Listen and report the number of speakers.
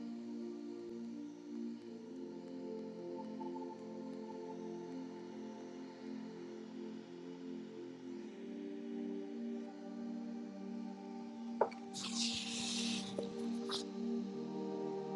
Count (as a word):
zero